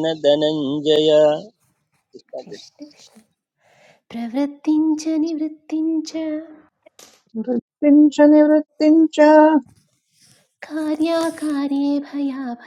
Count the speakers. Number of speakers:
three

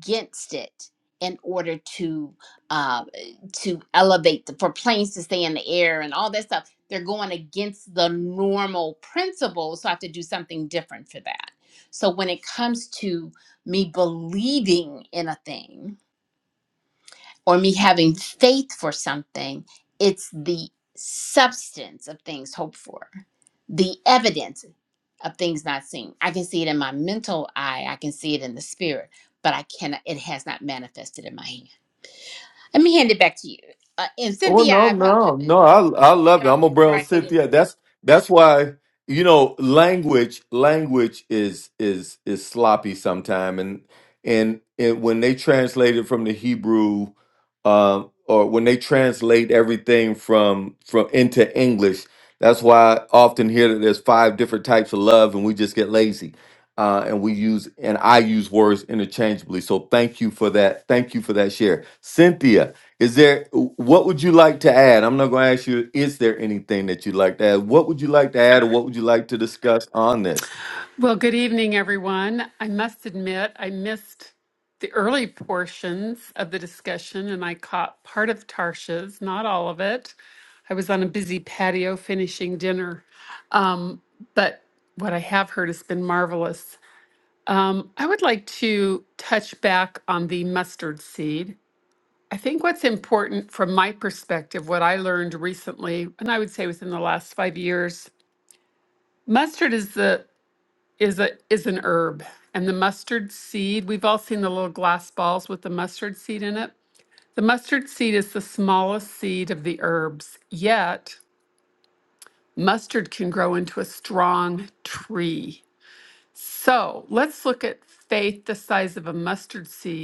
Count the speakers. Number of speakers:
three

